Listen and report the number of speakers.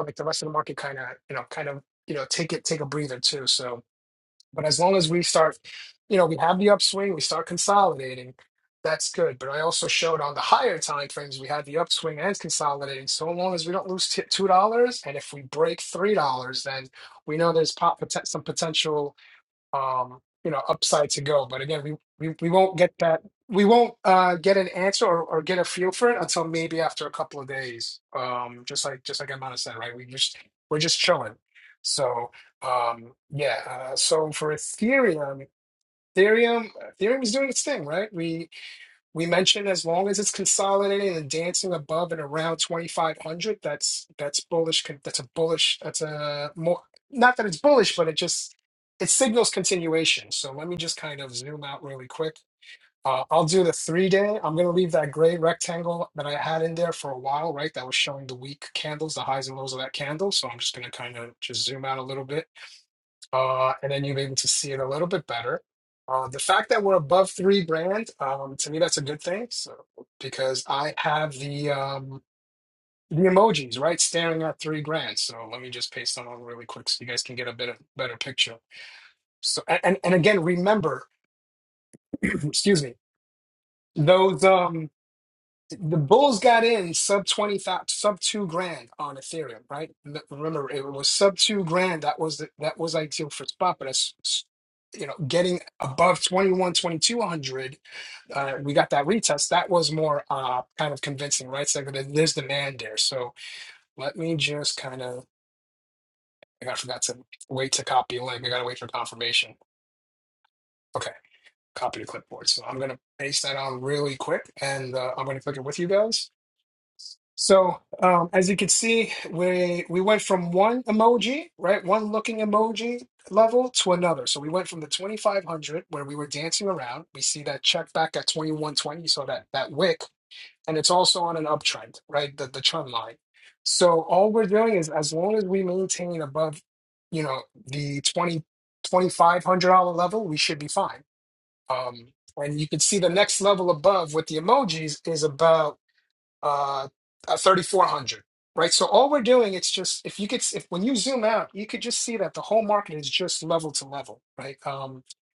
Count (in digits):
1